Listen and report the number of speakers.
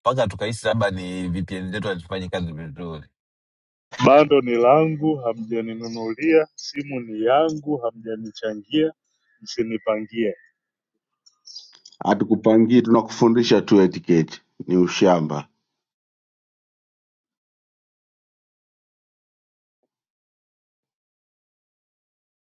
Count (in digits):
3